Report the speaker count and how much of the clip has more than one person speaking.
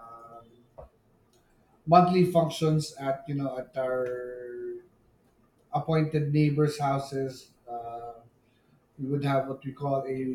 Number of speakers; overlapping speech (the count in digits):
1, no overlap